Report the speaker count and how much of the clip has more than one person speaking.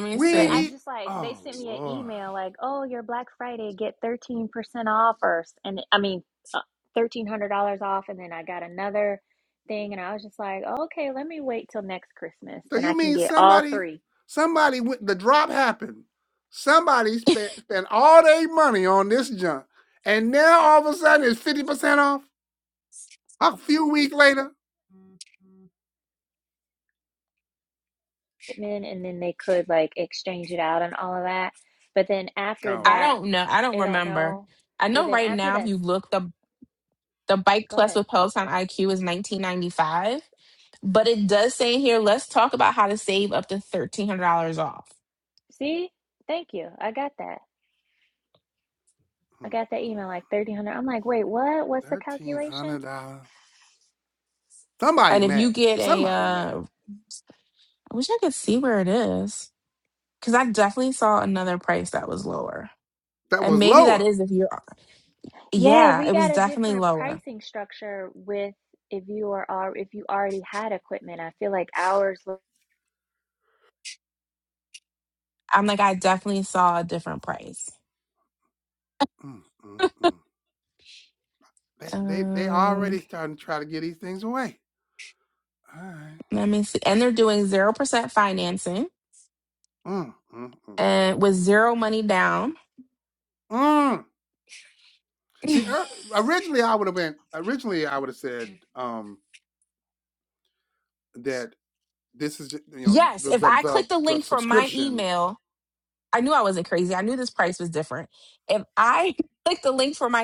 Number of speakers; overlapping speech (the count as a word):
three, about 11%